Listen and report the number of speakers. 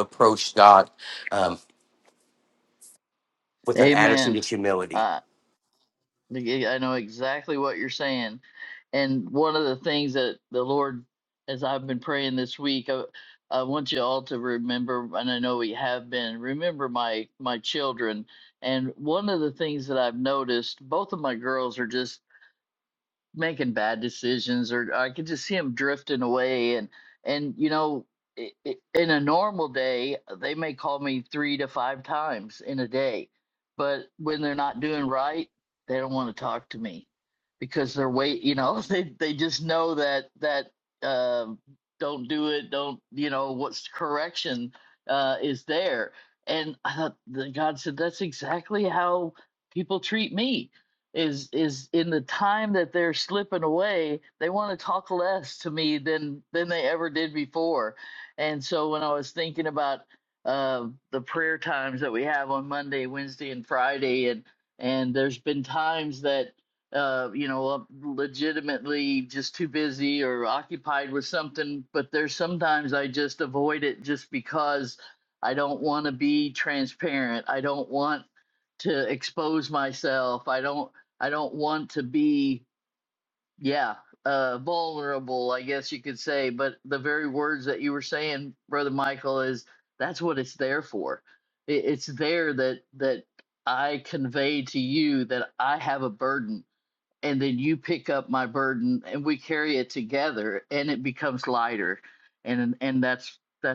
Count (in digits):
2